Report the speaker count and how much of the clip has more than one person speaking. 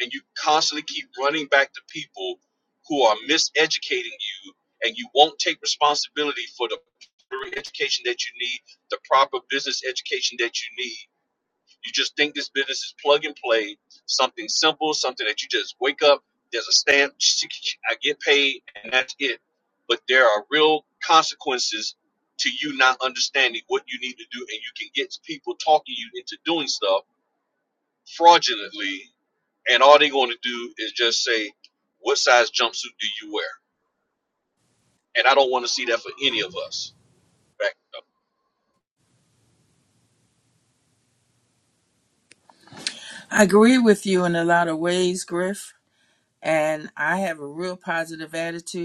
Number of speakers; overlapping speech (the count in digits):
2, no overlap